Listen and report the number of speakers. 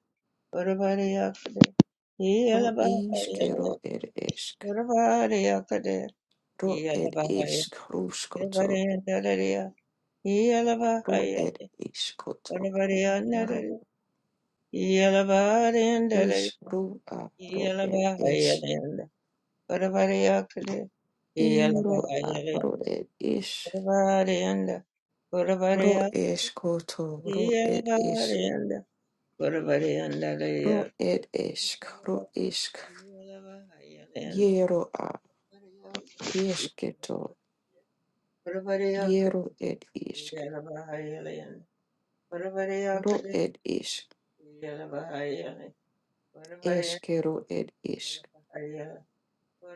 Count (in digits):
2